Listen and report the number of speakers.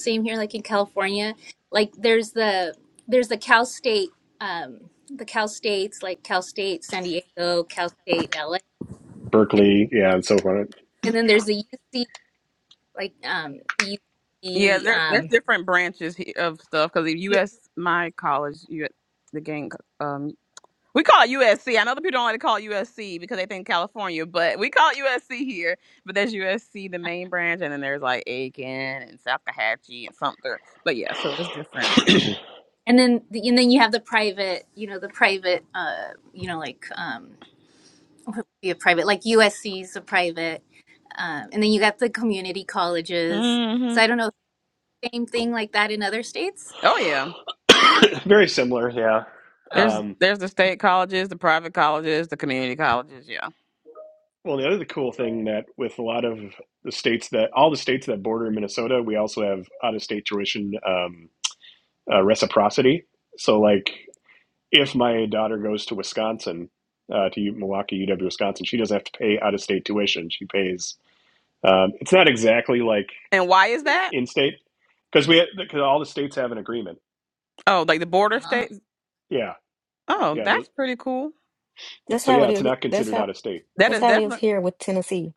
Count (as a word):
four